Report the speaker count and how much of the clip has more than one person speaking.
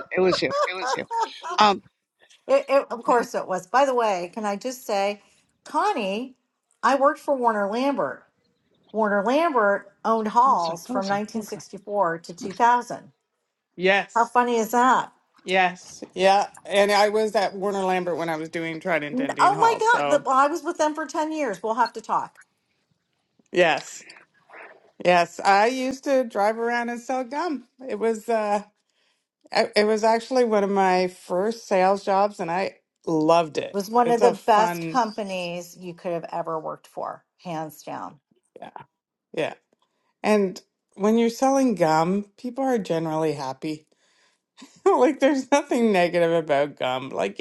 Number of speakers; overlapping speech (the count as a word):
three, about 7%